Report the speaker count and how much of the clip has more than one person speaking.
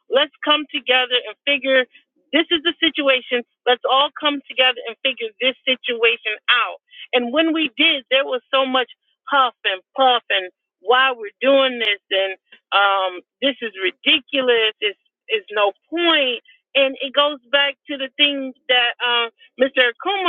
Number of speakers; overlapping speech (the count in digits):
1, no overlap